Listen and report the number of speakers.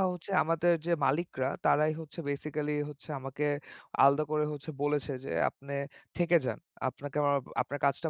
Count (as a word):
one